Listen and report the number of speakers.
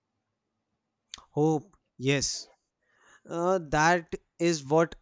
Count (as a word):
one